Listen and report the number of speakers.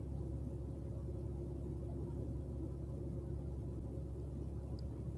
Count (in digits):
0